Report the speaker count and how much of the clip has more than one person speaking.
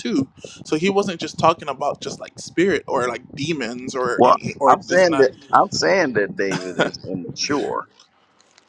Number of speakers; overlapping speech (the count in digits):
2, about 13%